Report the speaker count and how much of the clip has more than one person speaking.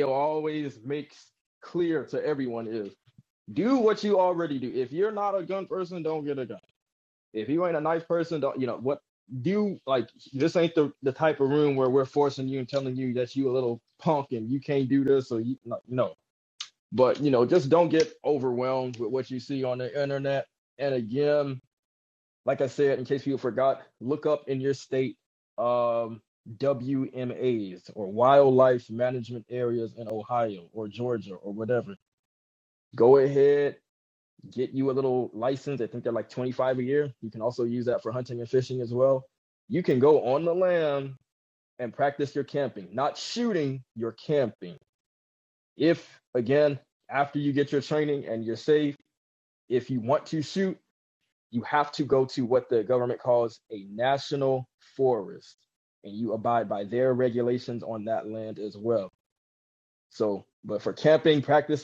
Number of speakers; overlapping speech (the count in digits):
1, no overlap